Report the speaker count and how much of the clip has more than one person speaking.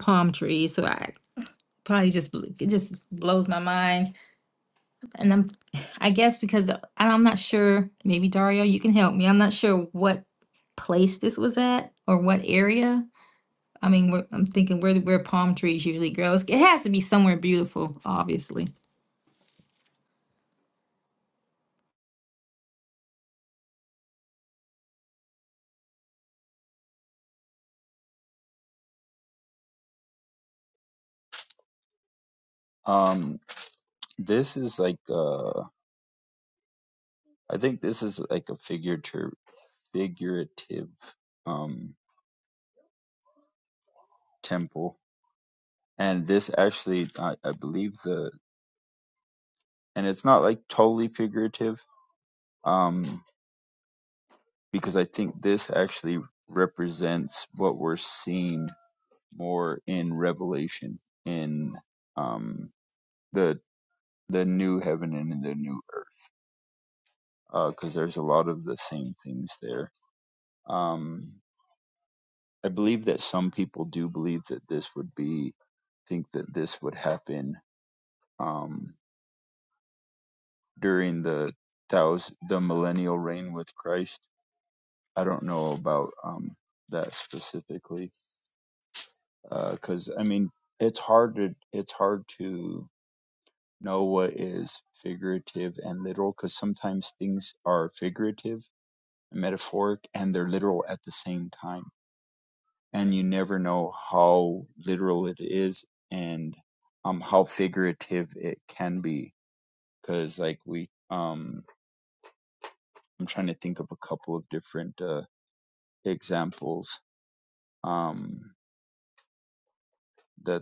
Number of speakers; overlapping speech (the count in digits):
2, no overlap